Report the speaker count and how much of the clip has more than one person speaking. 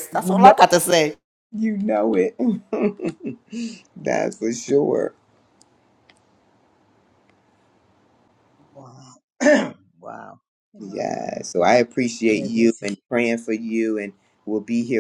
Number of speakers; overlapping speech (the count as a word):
three, about 11%